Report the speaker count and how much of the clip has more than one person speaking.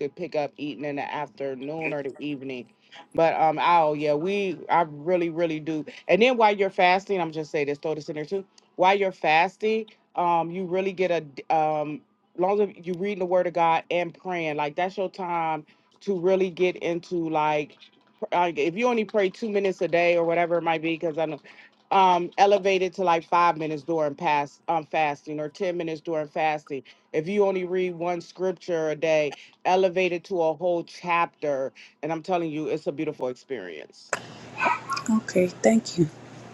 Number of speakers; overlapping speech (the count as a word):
two, no overlap